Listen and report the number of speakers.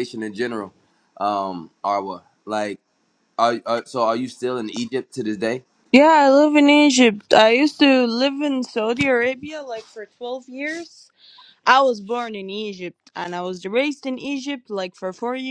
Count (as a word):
two